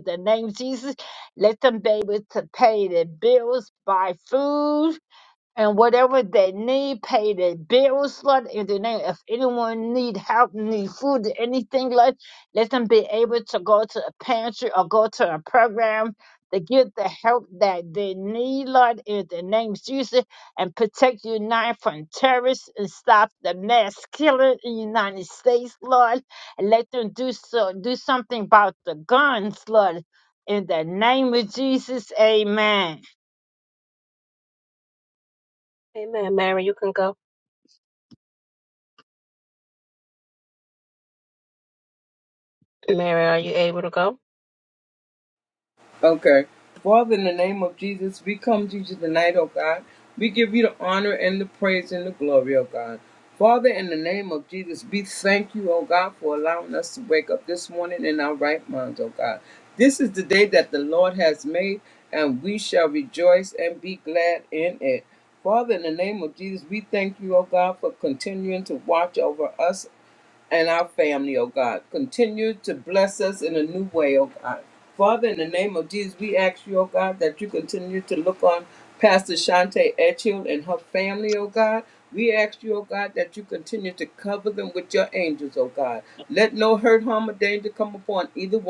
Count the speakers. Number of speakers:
3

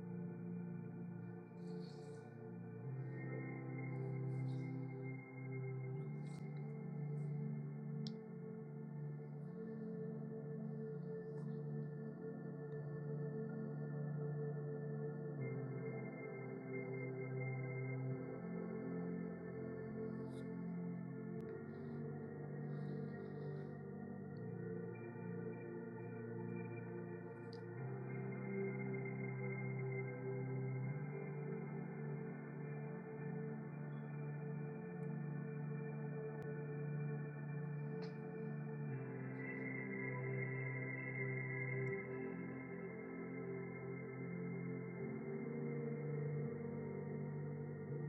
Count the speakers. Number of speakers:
0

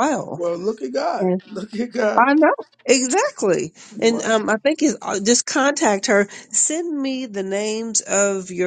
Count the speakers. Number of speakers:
2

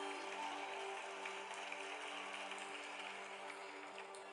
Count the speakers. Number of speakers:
0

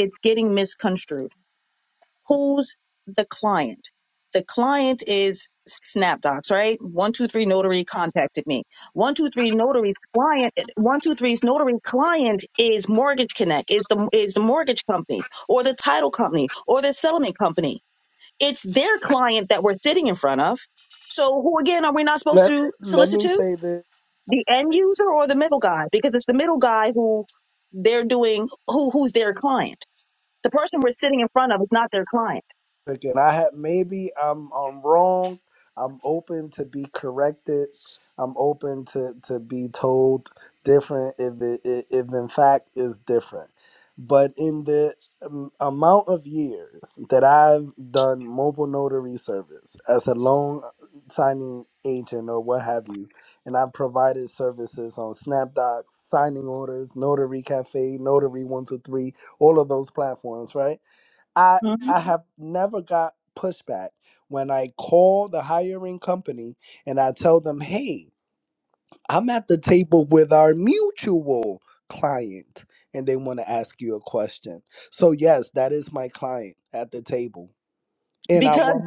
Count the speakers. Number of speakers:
2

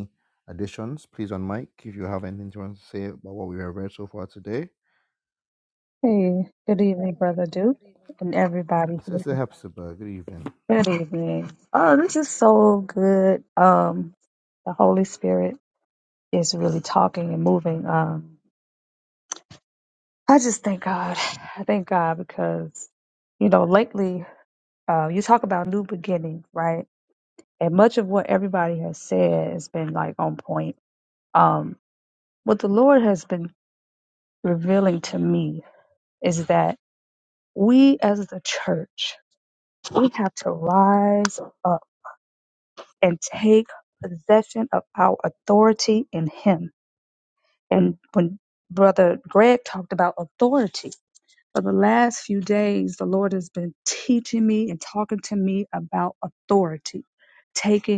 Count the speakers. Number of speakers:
2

